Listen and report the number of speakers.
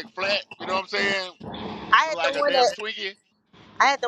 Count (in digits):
2